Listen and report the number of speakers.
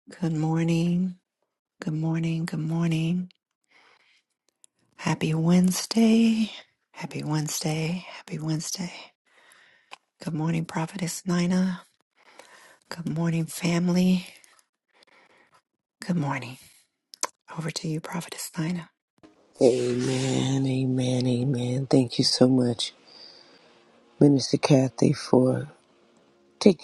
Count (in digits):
2